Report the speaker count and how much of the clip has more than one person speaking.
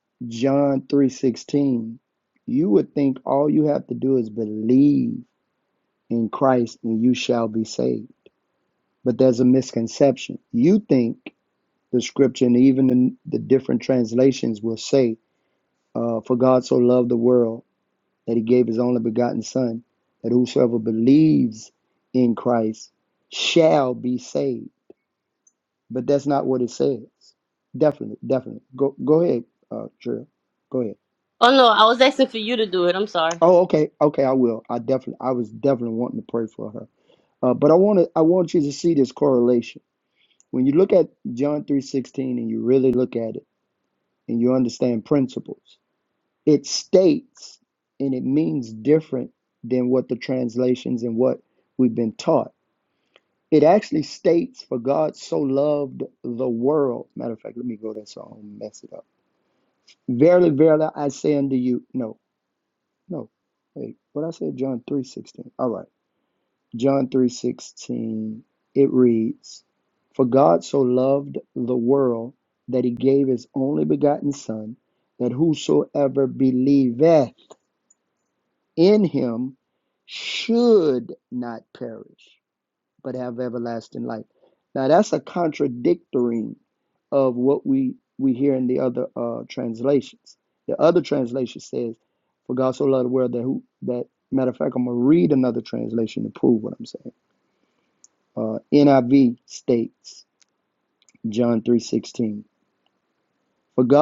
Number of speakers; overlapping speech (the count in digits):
2, no overlap